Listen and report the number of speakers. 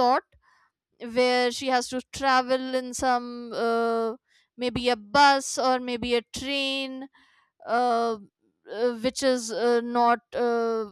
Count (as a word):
one